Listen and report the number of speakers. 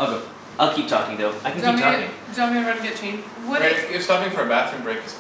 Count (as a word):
three